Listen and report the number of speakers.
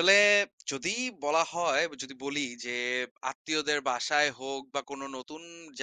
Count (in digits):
1